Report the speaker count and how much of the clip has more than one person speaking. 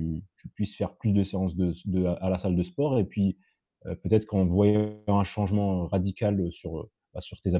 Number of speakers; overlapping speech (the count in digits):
1, no overlap